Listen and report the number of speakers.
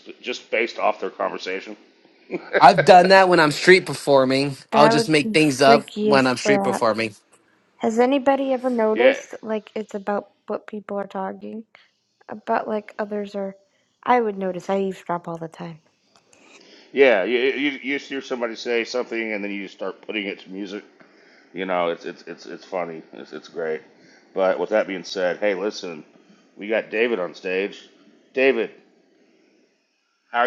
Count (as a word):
three